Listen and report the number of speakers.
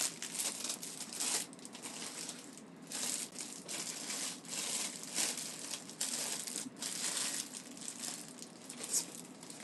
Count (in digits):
0